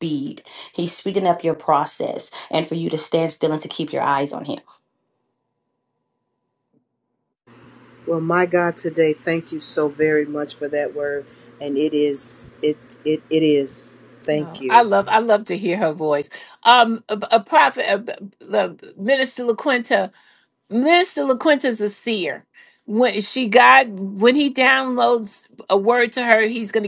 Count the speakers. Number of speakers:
three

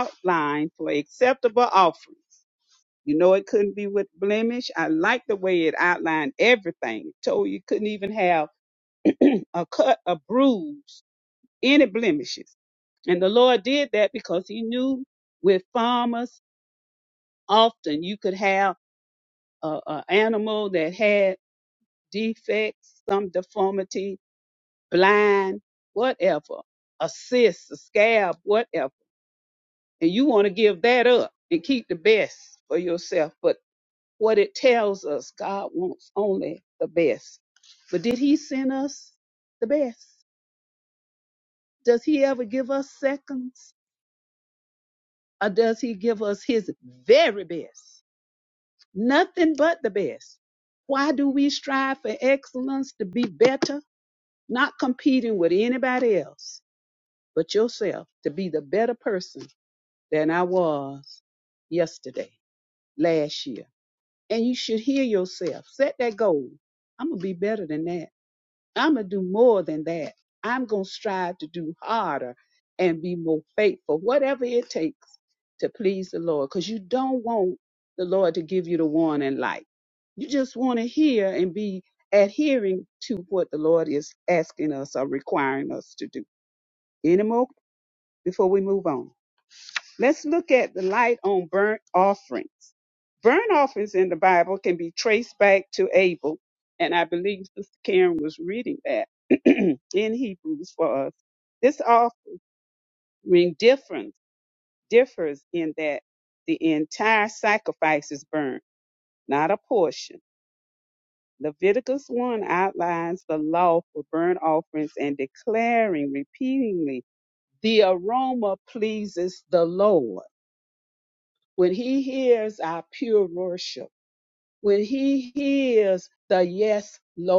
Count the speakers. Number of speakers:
one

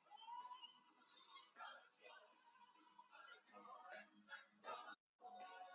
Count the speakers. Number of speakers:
zero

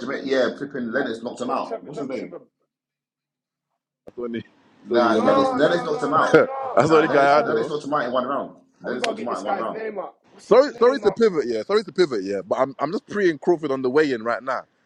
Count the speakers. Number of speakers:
three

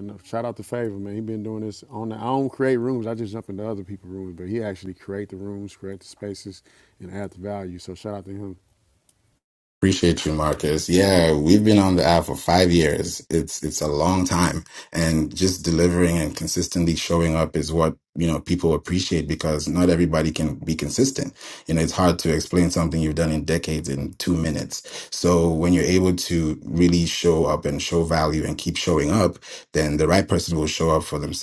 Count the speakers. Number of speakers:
two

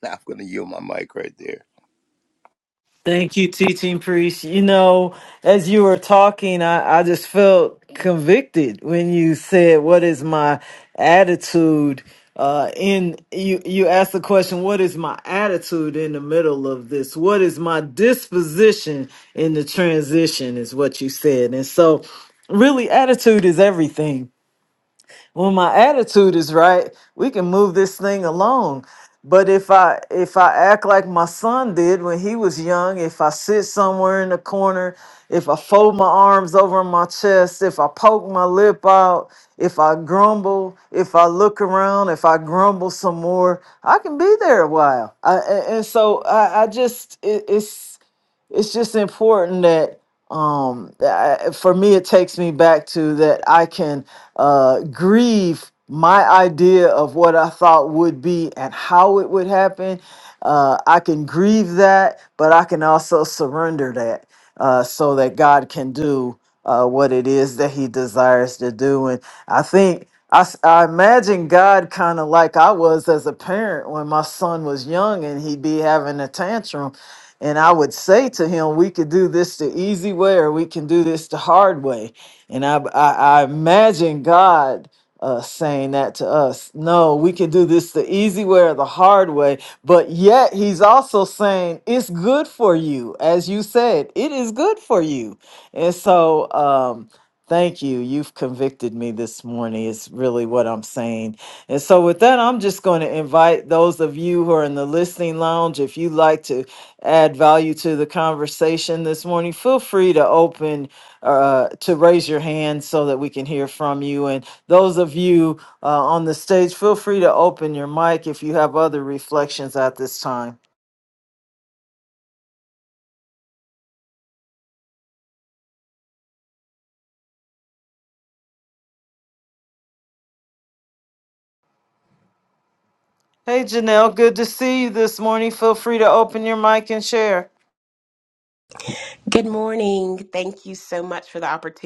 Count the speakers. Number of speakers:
three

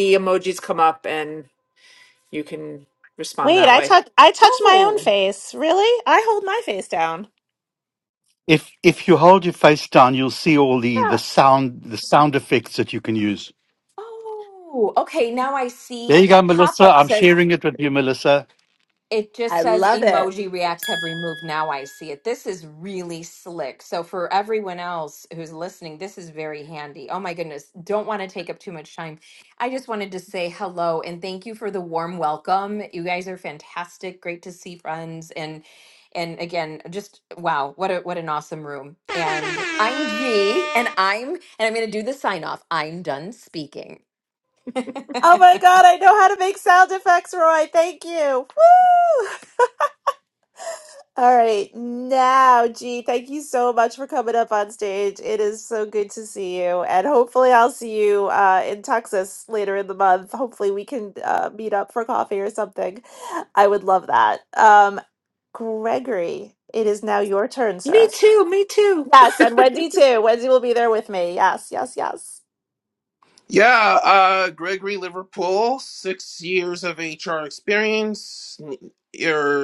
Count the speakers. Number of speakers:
five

